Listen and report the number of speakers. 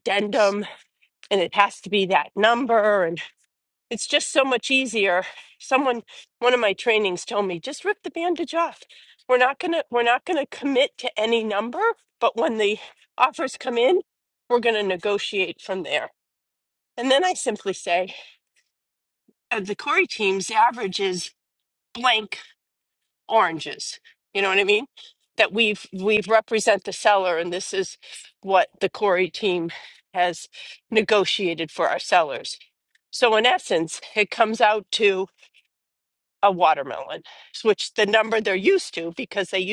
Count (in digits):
1